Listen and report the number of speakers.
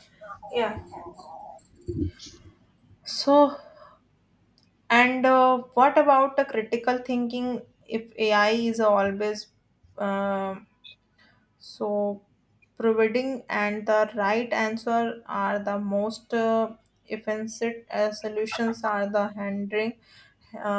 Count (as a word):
one